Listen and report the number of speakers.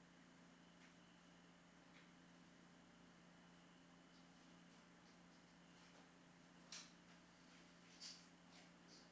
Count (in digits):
0